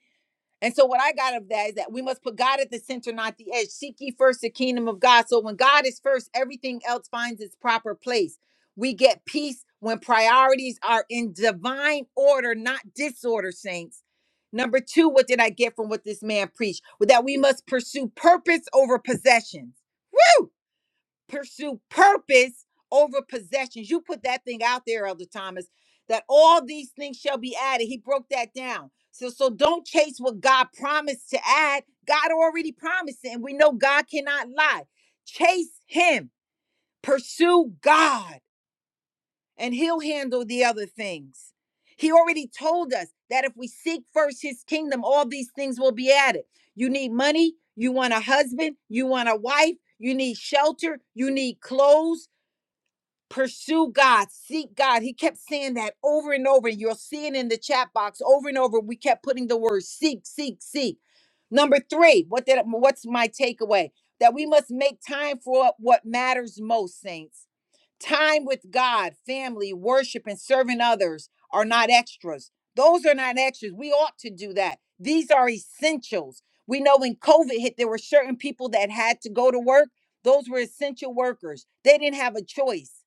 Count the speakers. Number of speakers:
1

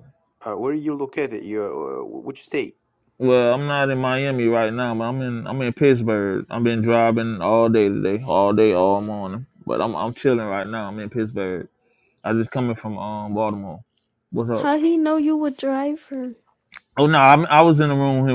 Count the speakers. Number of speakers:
3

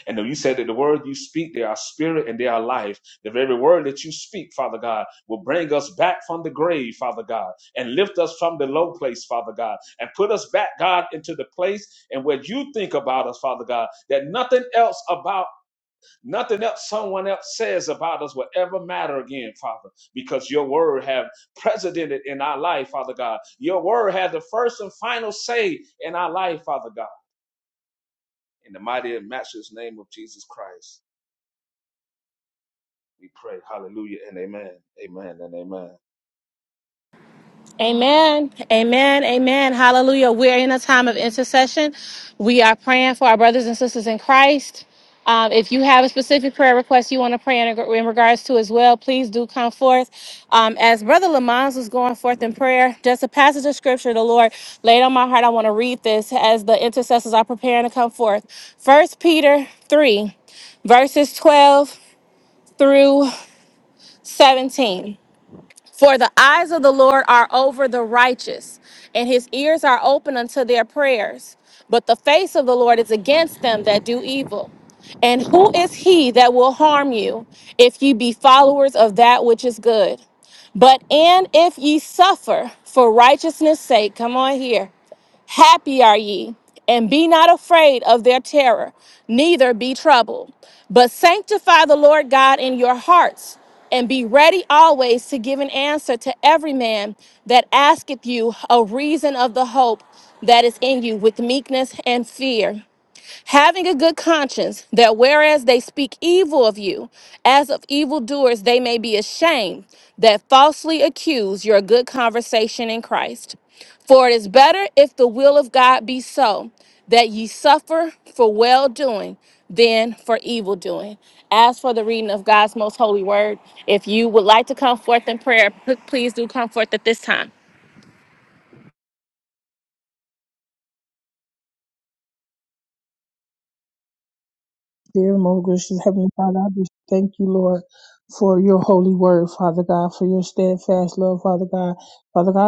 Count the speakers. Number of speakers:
3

